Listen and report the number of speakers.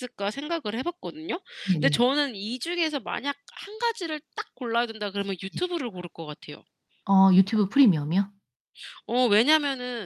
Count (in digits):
2